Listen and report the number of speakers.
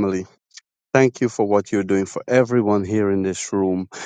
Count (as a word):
one